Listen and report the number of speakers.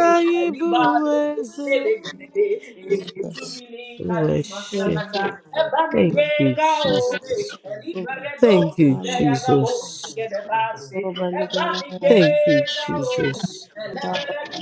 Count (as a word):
three